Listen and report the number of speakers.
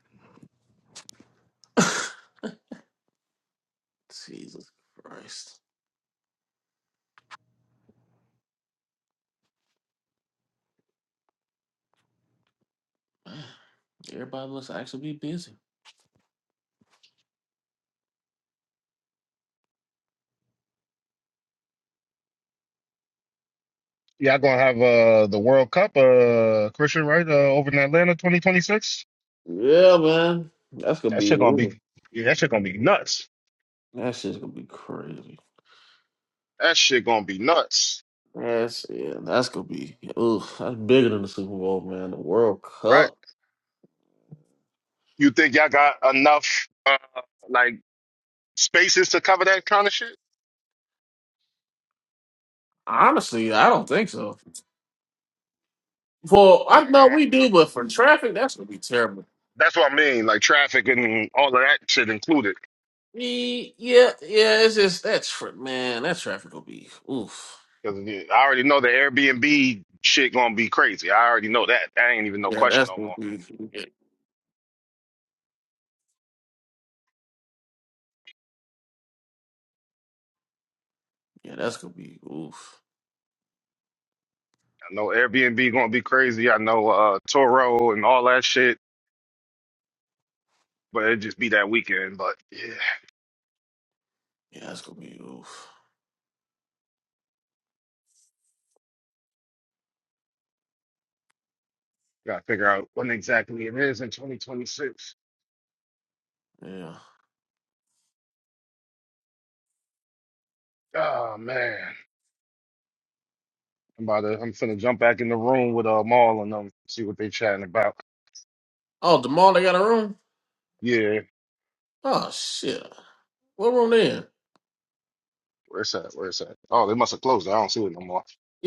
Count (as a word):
two